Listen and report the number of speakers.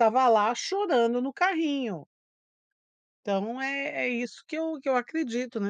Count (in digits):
1